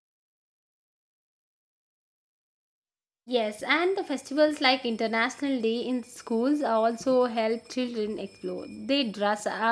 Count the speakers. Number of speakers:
1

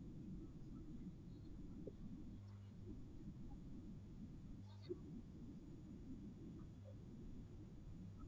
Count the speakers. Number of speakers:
0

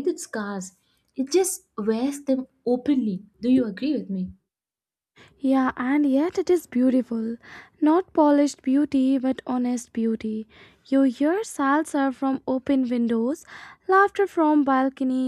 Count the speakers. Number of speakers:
2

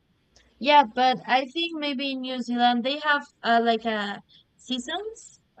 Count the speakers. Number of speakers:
1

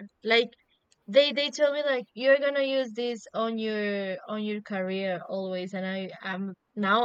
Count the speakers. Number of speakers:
1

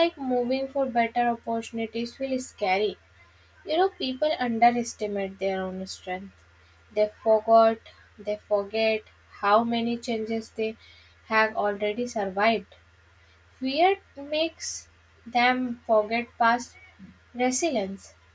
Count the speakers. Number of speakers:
1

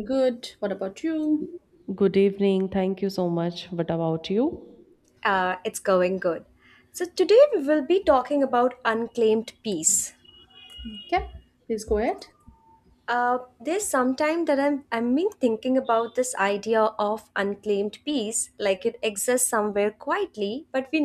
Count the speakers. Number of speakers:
3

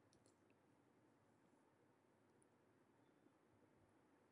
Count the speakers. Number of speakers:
0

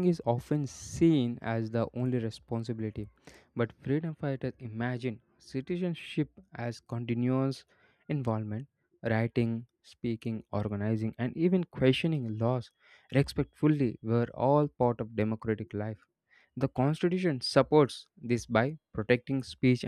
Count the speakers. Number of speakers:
1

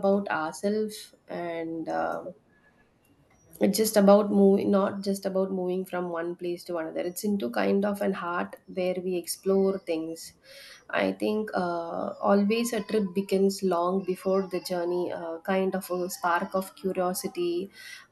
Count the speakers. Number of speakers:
1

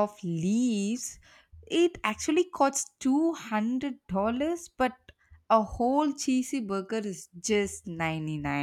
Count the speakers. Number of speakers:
1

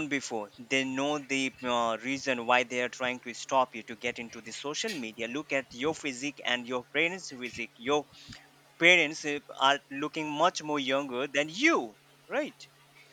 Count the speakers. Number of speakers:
1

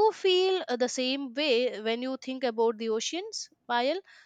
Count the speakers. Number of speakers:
1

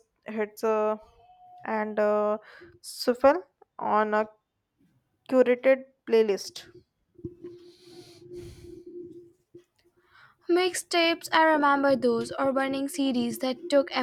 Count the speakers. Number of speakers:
2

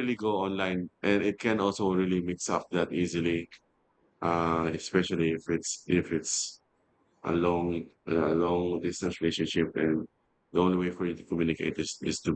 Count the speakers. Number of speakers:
1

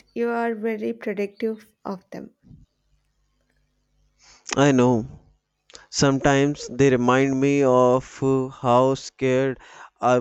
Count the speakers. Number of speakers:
2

